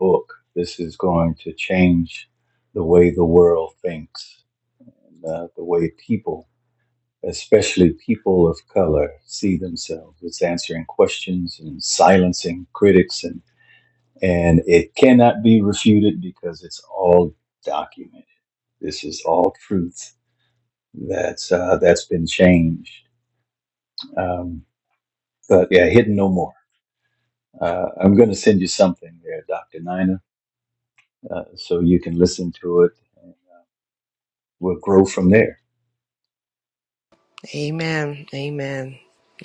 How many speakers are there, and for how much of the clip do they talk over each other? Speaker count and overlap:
two, no overlap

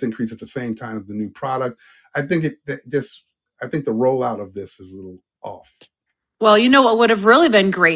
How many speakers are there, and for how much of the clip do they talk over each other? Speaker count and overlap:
two, no overlap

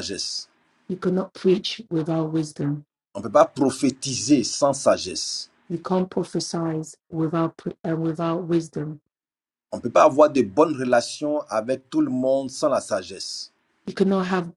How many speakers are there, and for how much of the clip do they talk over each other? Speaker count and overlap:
two, no overlap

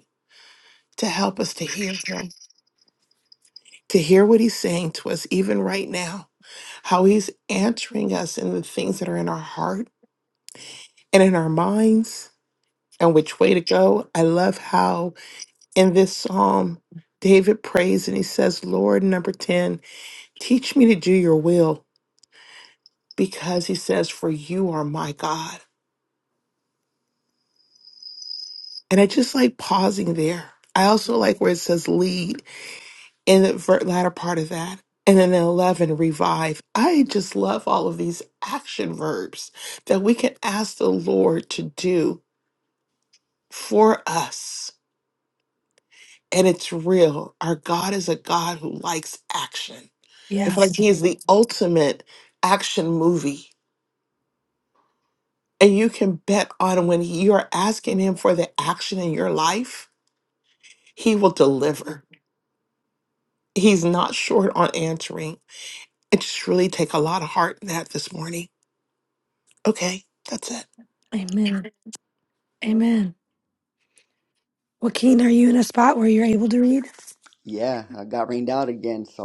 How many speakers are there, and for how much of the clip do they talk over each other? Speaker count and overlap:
three, under 1%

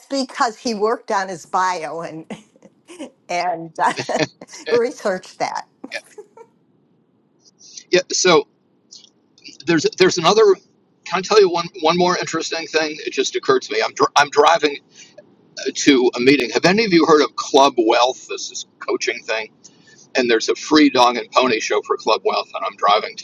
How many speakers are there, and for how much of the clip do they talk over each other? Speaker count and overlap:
two, no overlap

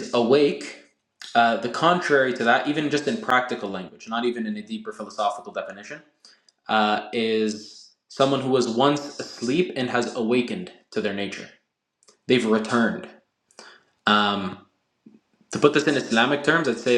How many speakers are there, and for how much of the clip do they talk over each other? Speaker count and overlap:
one, no overlap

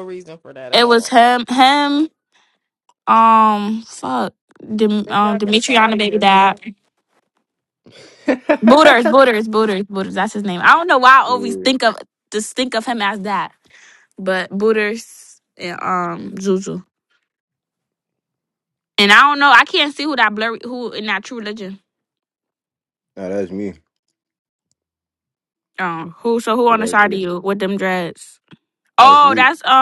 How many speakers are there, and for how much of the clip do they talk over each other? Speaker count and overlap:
three, about 11%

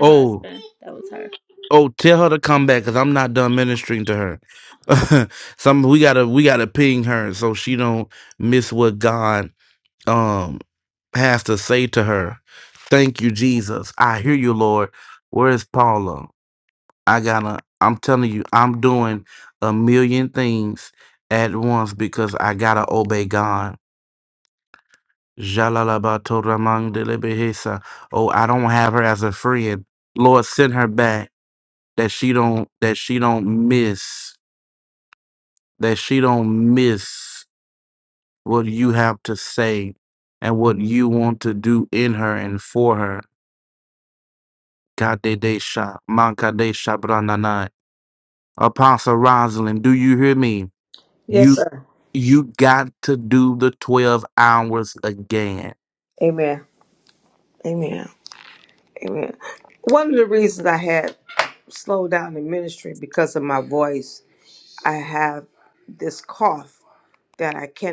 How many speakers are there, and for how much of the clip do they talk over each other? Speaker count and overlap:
three, about 1%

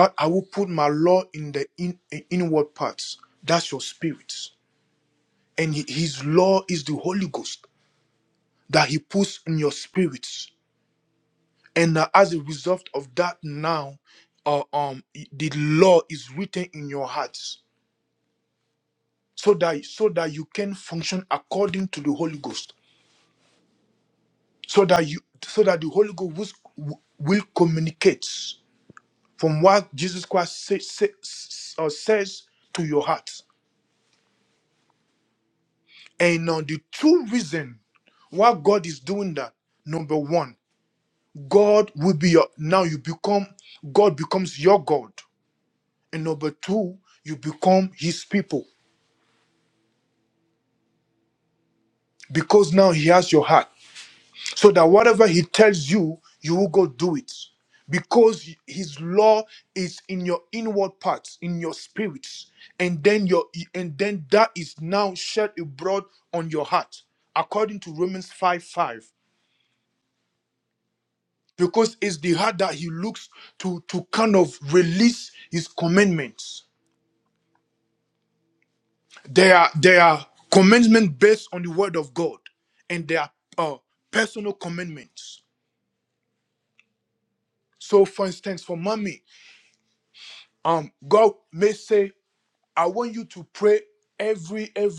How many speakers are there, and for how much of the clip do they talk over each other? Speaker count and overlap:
one, no overlap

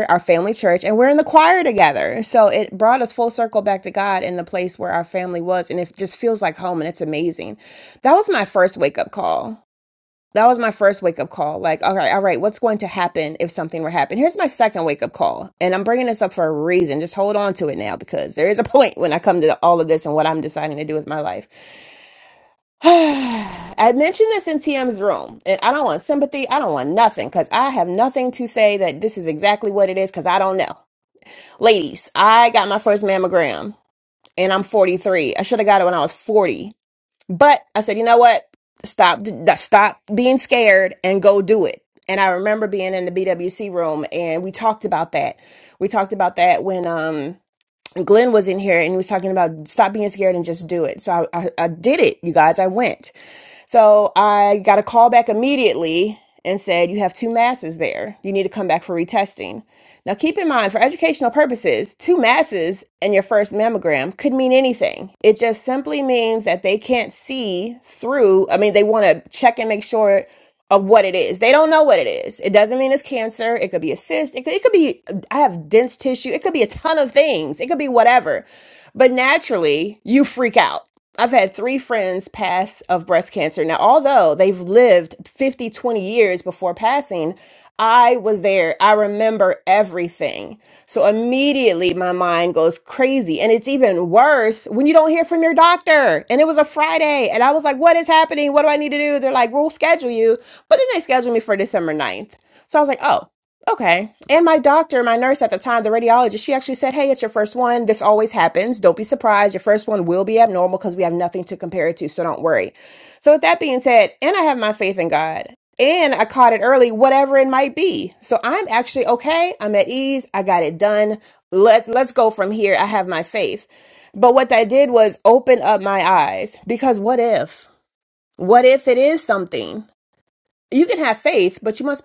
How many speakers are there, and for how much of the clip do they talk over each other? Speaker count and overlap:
one, no overlap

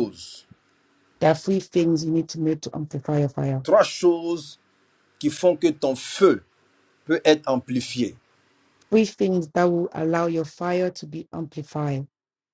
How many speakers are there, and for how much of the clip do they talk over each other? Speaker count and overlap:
two, no overlap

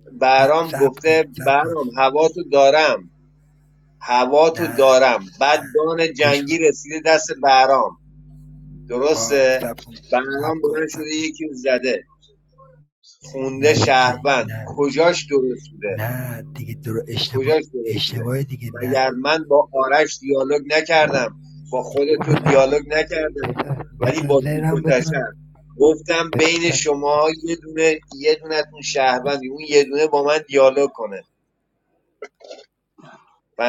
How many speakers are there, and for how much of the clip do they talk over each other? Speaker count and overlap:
two, about 25%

